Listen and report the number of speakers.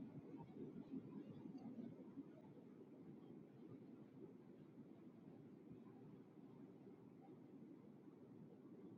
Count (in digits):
0